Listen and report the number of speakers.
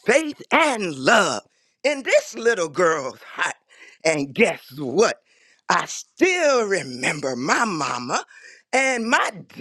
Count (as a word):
one